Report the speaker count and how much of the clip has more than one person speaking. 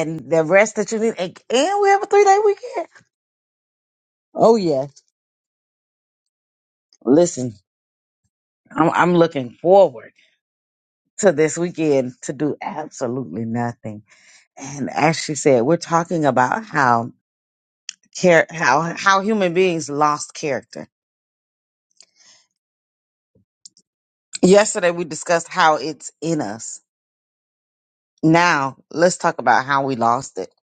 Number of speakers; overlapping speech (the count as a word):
one, no overlap